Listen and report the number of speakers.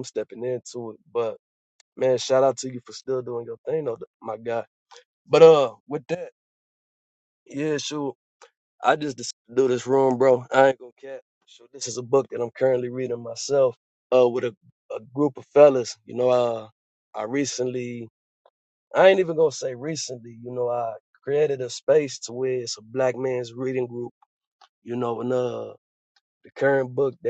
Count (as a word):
one